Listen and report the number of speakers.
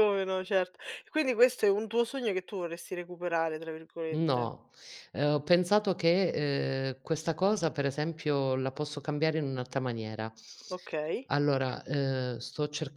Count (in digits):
2